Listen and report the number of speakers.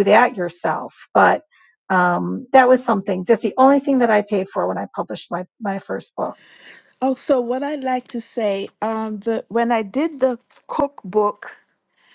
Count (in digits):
2